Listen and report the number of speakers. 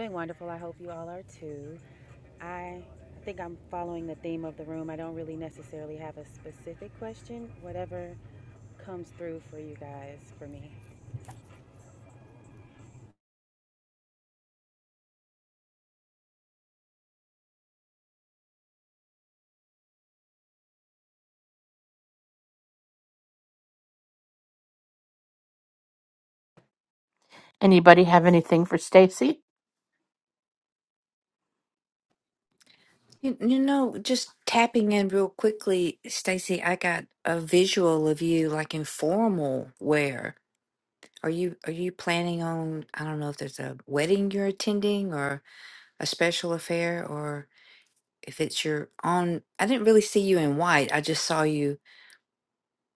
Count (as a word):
three